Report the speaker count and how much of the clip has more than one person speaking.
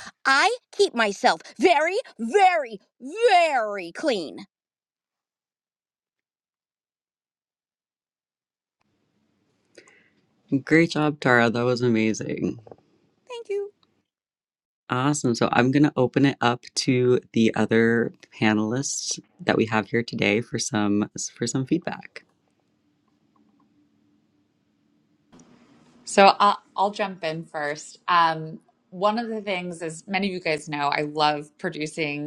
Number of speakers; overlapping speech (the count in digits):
3, no overlap